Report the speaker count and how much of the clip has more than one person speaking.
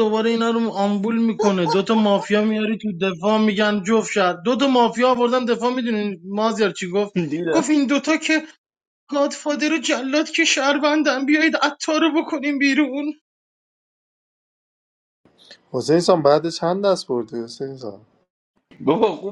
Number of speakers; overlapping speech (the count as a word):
three, about 1%